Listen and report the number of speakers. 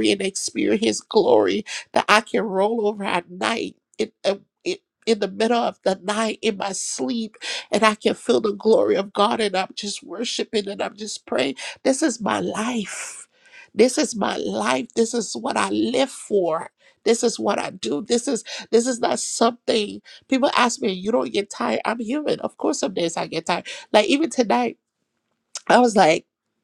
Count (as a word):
one